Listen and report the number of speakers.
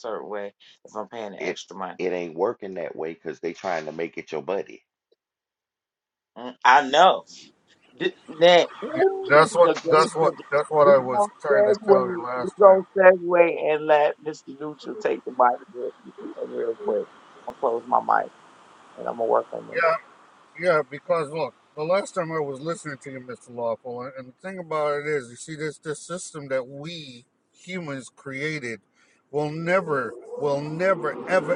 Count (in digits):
3